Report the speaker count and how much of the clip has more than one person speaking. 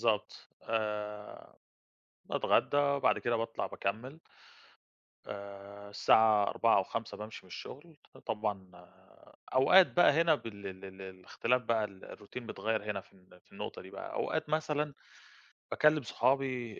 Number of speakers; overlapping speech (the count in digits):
1, no overlap